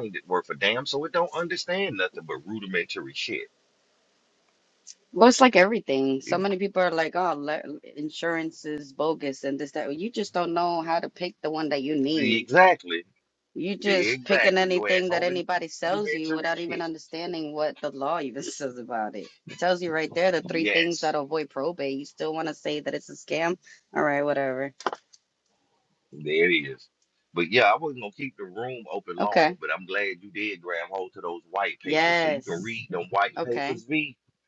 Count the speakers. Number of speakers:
2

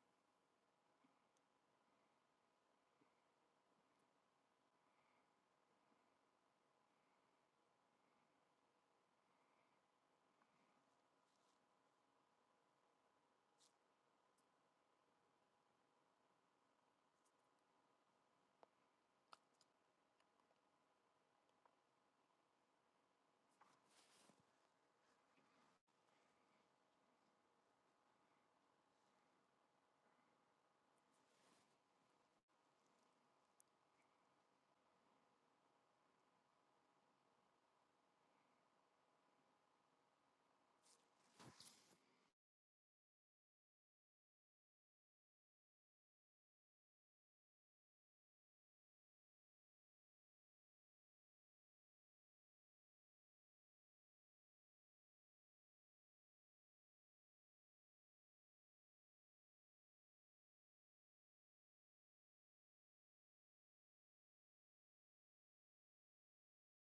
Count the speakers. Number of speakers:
0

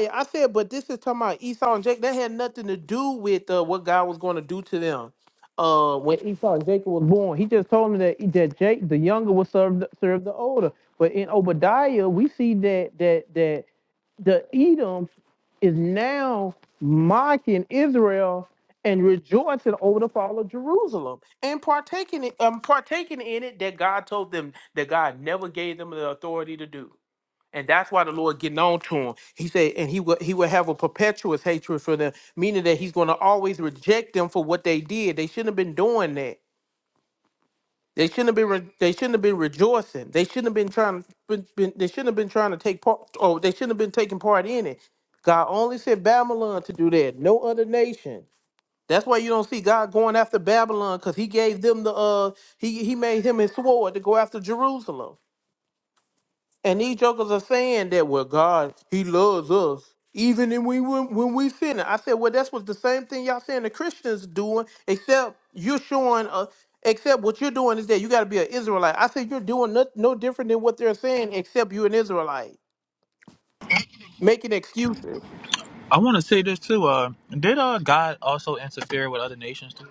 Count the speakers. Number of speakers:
2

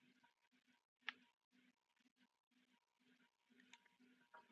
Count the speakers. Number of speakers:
0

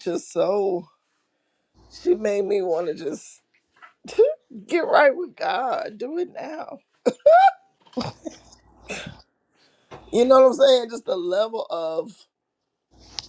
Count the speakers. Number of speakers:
1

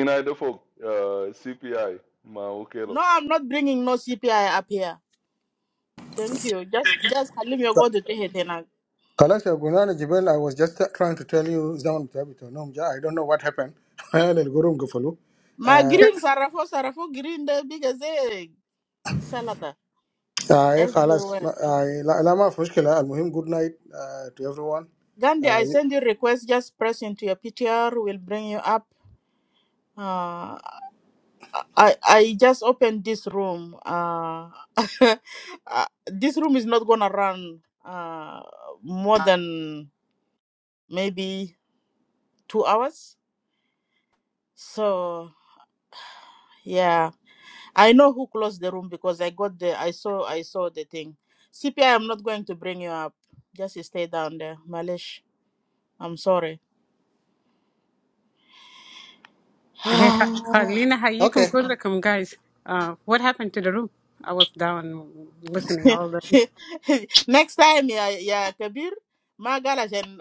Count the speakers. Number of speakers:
4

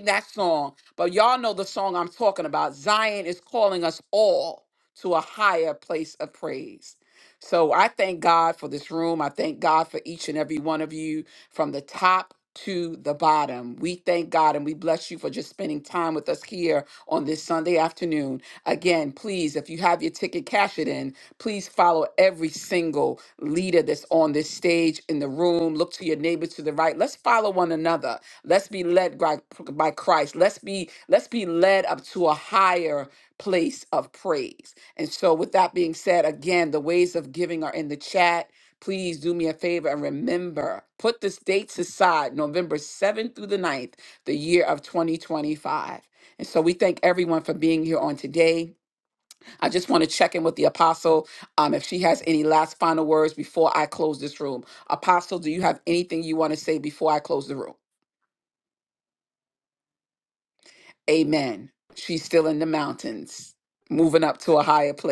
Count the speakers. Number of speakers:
1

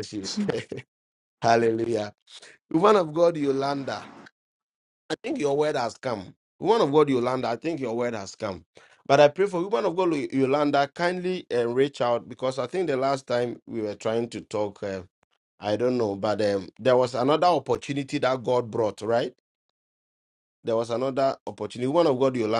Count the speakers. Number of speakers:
1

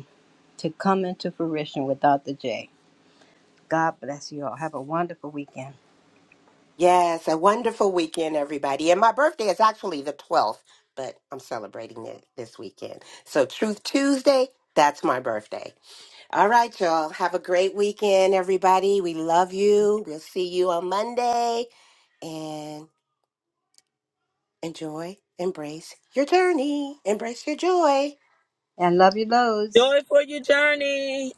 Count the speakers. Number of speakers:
3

